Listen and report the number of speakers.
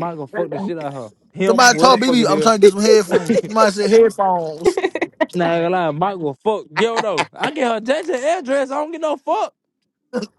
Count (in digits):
2